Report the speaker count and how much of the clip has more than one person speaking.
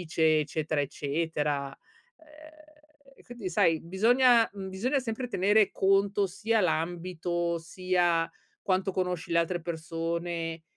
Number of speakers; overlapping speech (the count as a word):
one, no overlap